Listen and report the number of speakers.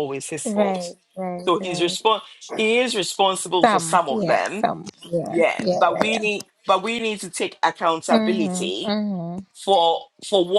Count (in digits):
2